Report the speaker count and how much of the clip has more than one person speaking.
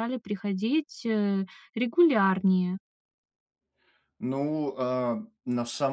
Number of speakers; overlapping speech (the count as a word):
two, no overlap